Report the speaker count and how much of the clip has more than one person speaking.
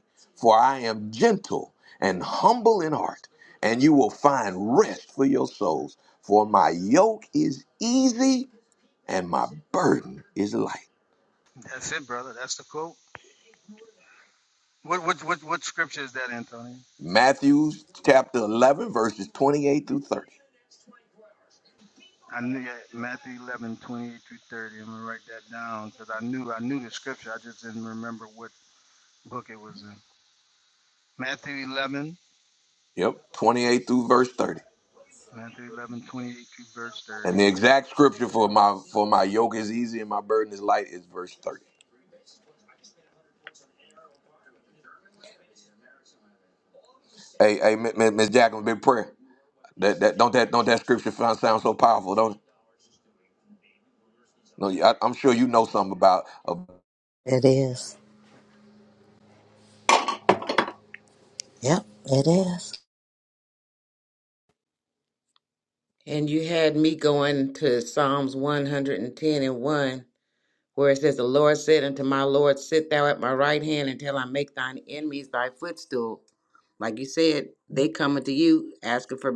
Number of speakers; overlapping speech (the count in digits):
4, under 1%